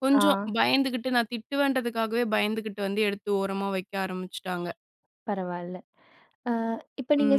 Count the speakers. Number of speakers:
two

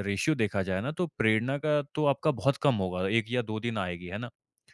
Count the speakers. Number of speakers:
one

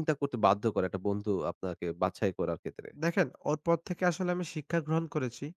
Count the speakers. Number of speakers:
two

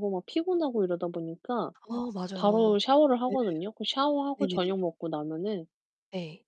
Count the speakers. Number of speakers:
two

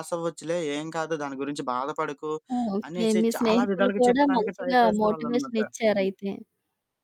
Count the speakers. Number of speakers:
two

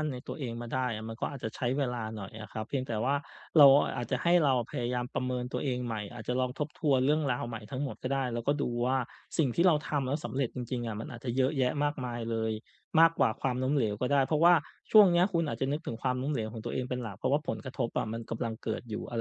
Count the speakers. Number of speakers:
one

